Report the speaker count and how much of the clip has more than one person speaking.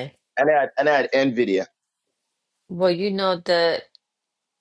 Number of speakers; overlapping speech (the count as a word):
two, no overlap